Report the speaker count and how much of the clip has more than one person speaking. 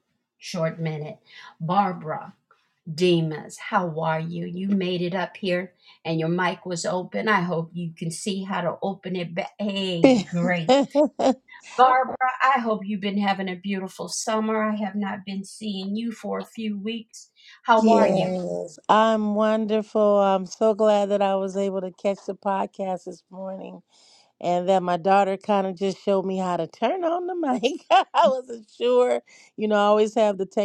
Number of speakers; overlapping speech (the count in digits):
2, about 2%